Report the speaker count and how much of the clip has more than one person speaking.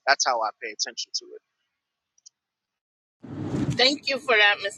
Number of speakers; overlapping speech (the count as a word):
two, no overlap